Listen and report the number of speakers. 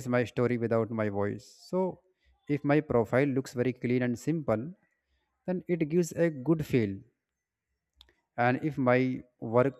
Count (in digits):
1